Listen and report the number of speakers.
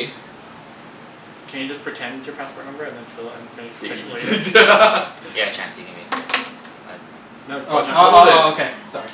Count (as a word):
four